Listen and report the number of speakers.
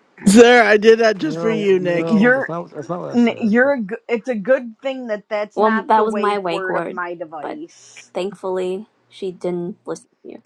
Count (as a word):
four